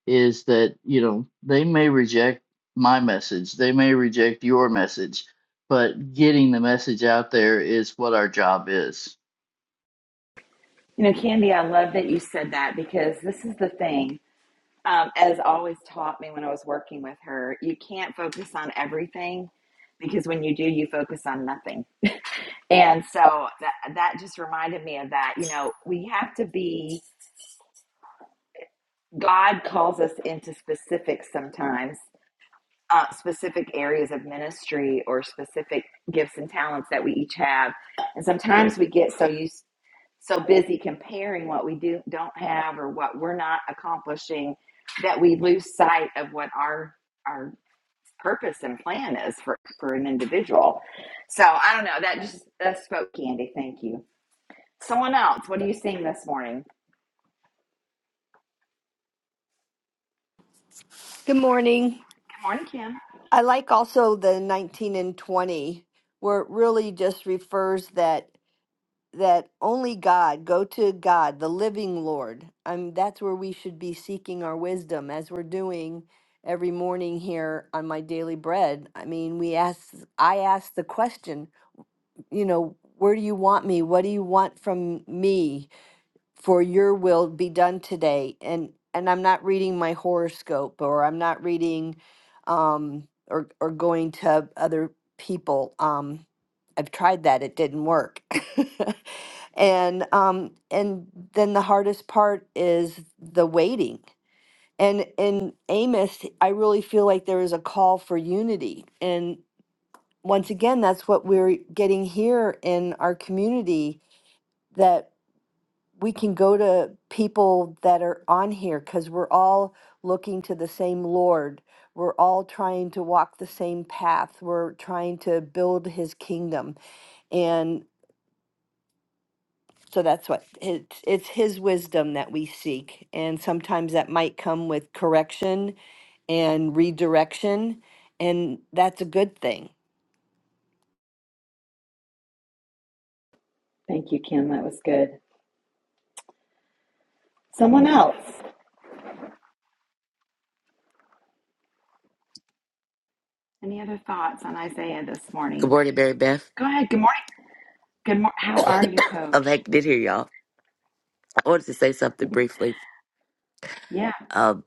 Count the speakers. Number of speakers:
4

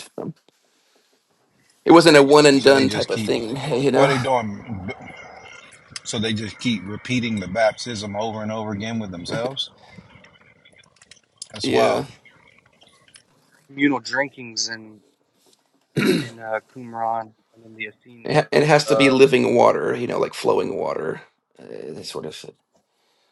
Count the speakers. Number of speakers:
3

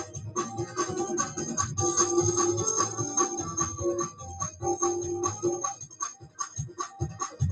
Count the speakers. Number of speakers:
0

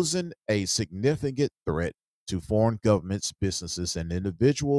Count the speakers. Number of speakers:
1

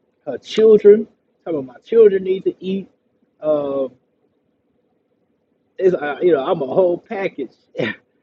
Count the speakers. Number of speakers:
1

